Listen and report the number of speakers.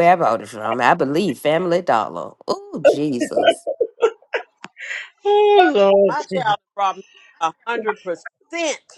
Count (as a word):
three